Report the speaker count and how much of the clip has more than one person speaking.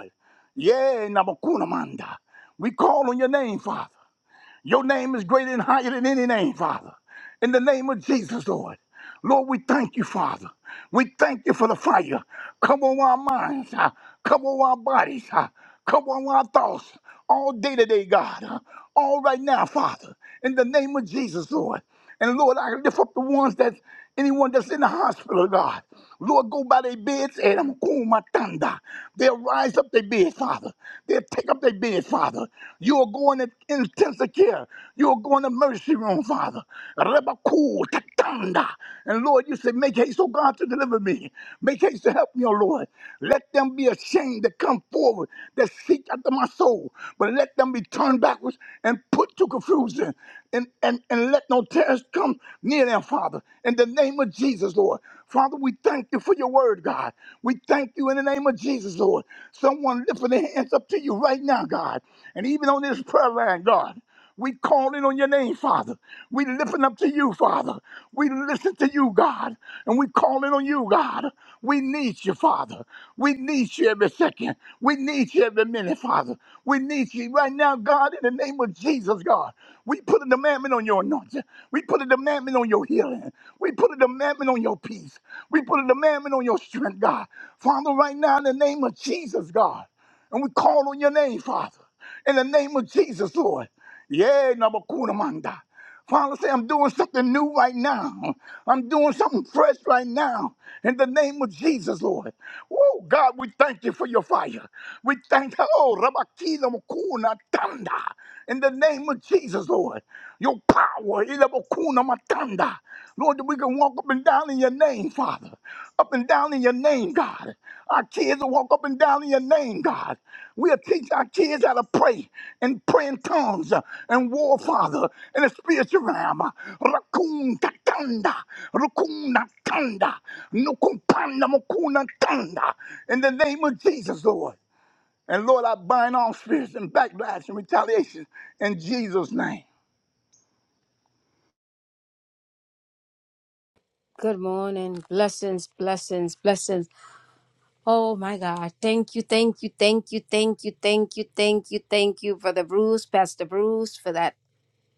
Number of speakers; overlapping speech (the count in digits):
2, no overlap